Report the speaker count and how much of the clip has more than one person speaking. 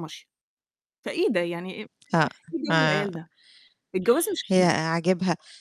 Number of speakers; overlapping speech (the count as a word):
two, about 13%